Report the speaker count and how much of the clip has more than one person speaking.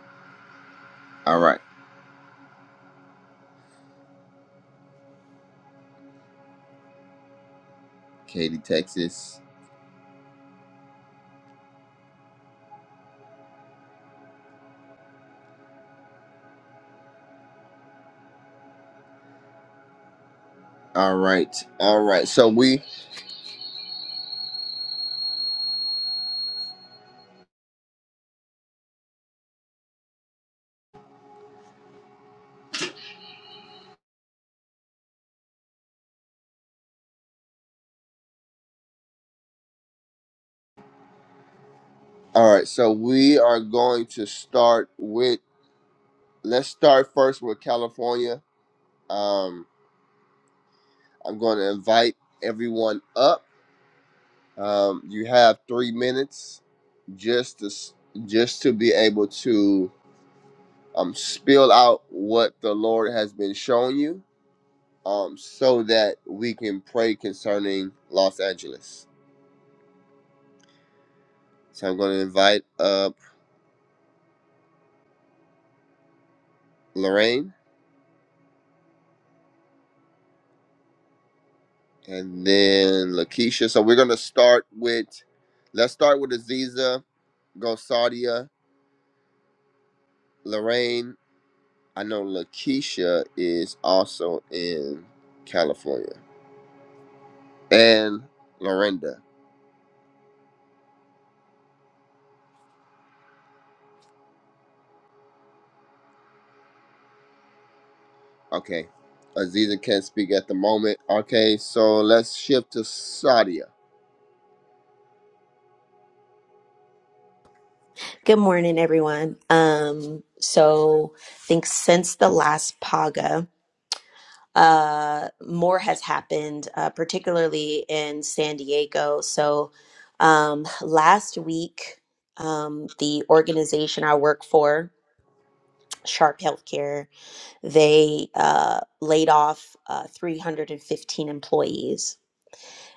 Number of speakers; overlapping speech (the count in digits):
2, no overlap